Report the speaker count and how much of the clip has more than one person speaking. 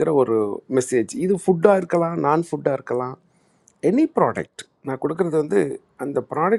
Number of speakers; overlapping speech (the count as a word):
one, no overlap